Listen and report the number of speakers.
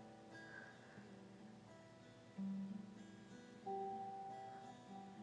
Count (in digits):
0